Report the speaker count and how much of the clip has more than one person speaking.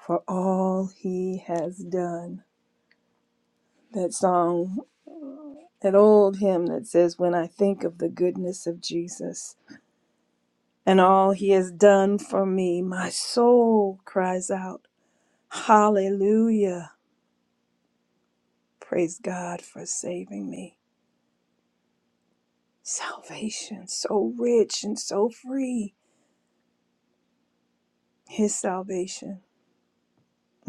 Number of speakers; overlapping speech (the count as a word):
one, no overlap